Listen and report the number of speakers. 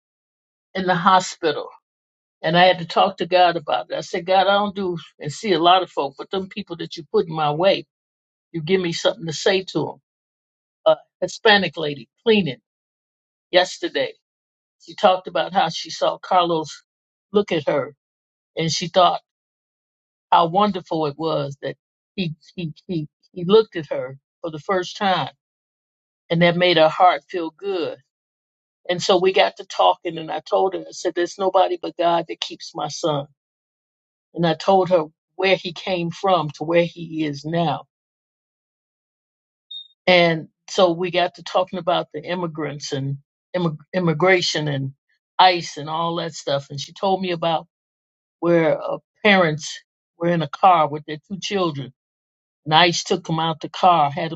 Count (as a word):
one